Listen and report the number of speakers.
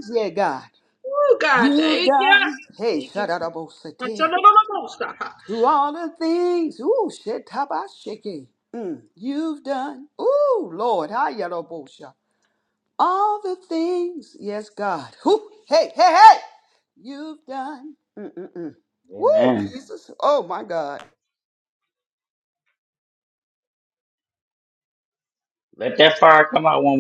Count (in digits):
3